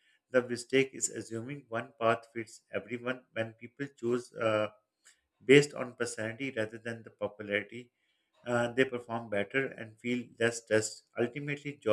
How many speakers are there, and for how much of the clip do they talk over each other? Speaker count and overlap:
one, no overlap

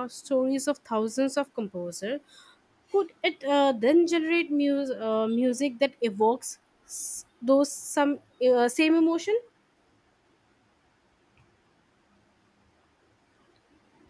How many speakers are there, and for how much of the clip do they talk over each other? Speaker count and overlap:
one, no overlap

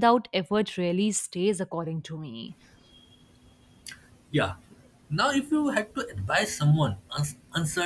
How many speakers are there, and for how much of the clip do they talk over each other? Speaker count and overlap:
two, no overlap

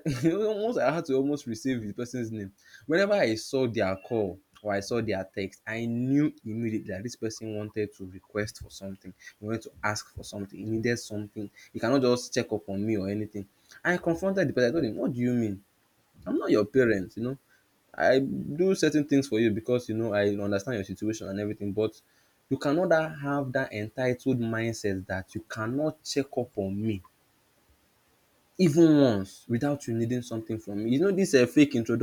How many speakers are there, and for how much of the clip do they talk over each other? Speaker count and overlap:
one, no overlap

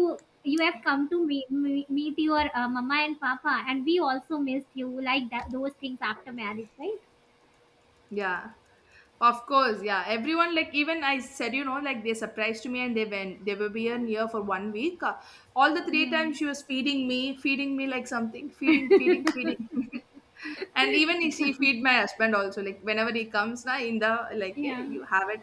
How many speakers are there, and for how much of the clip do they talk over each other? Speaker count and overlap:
two, about 3%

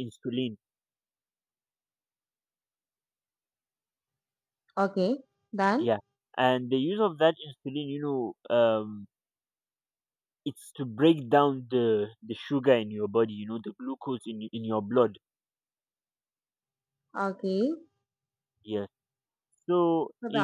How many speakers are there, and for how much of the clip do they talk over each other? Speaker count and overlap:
two, about 1%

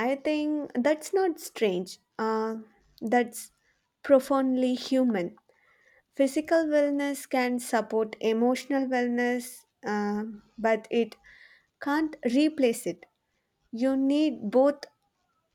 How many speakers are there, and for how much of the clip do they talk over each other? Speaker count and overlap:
one, no overlap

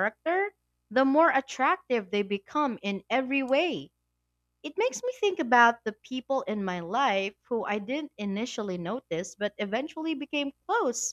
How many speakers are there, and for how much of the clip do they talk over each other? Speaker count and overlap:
one, no overlap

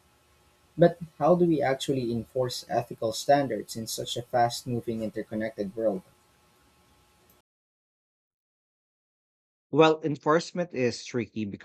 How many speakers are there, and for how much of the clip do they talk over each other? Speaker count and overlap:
two, no overlap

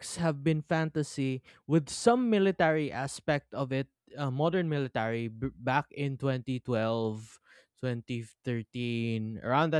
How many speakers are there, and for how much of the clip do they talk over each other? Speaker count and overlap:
one, no overlap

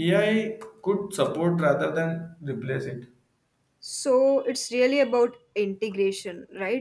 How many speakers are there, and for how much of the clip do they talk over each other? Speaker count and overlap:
two, no overlap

